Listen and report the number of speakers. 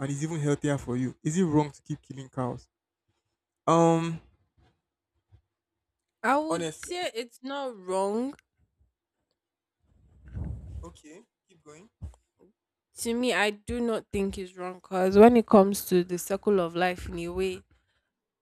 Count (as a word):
two